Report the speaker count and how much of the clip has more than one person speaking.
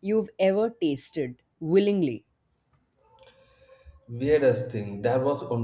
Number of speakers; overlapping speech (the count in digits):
2, no overlap